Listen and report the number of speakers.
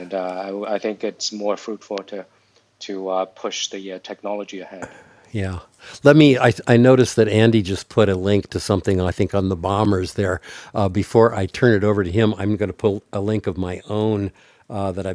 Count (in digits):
2